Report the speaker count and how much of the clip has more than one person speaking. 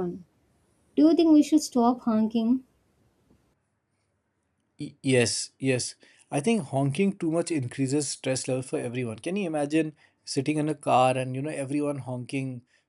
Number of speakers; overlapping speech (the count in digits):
2, no overlap